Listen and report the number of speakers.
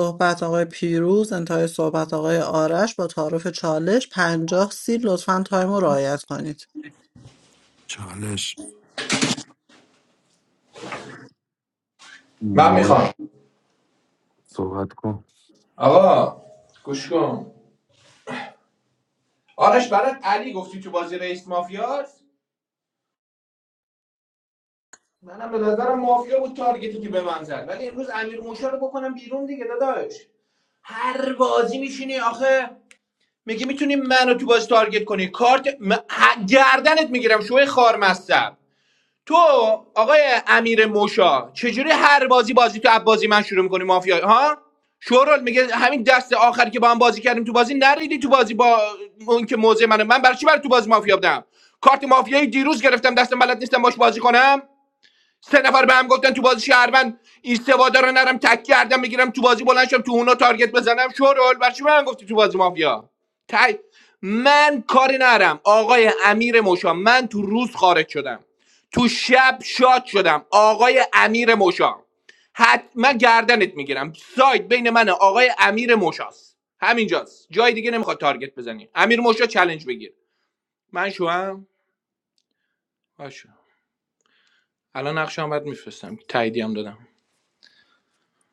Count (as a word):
three